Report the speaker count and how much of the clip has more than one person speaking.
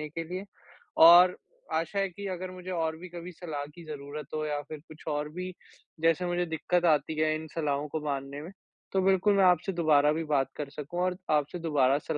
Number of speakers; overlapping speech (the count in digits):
1, no overlap